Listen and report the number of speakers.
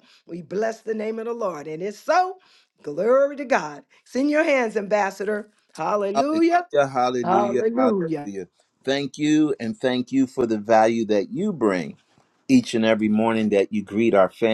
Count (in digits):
2